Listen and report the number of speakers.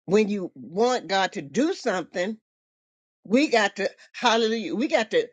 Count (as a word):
one